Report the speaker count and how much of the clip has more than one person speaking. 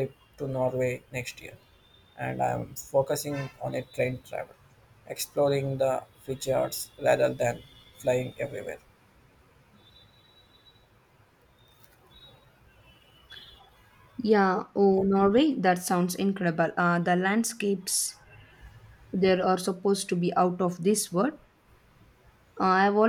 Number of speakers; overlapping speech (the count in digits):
2, no overlap